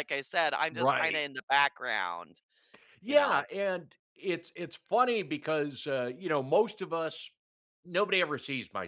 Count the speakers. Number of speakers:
2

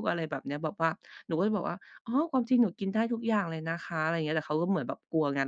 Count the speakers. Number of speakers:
1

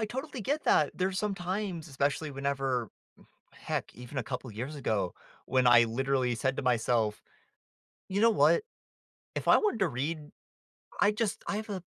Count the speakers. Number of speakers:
1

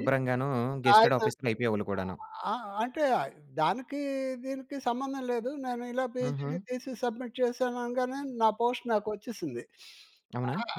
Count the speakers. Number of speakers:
2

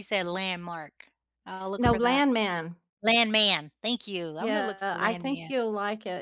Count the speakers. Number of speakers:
2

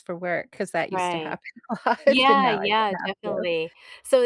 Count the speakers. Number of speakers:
2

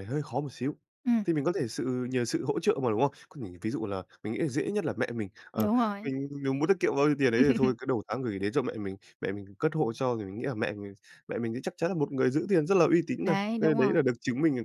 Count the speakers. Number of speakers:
2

